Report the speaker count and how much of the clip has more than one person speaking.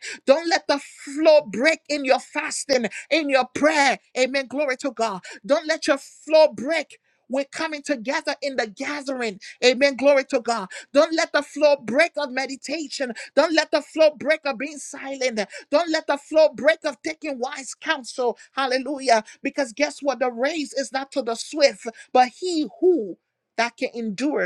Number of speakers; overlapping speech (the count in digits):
1, no overlap